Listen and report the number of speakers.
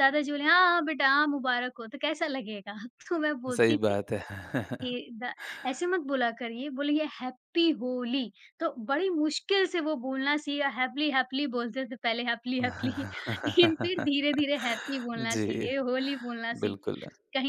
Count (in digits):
2